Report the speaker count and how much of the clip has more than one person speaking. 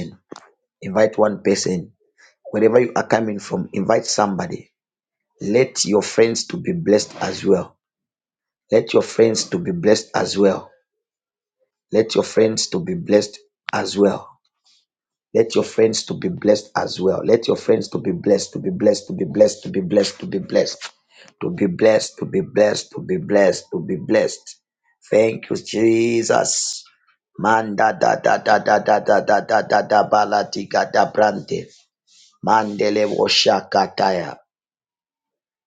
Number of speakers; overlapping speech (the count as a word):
one, no overlap